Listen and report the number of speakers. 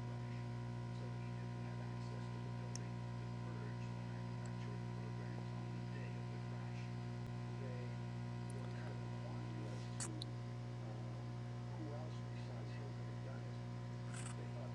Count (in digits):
0